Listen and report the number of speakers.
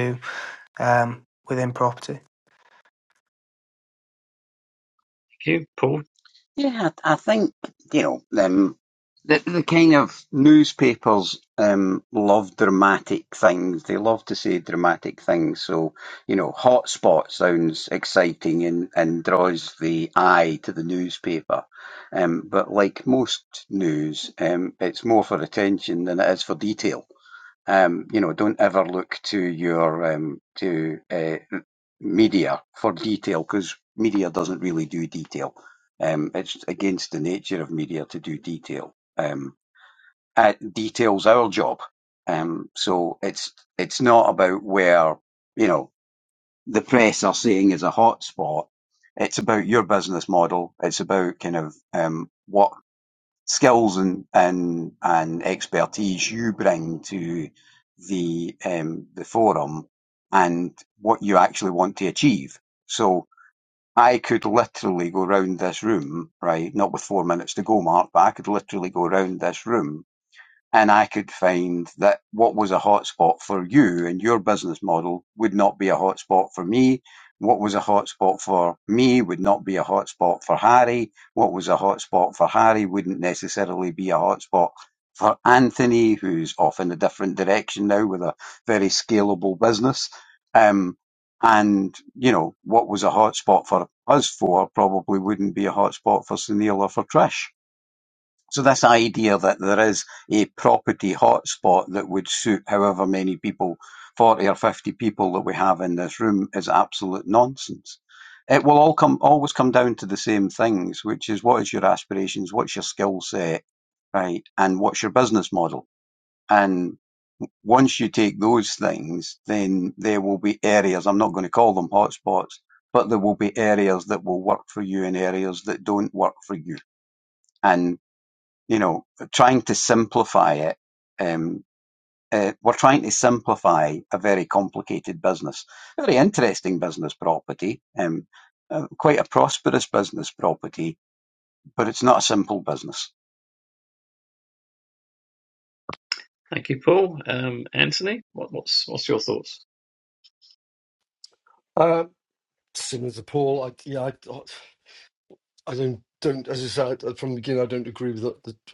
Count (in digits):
4